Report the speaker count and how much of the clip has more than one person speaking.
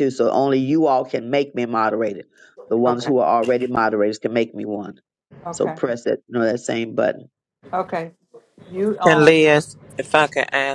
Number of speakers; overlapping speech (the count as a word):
three, about 7%